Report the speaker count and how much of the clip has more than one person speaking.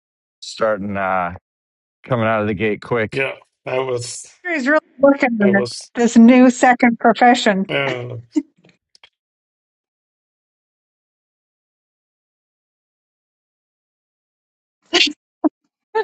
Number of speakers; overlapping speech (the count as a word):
three, about 2%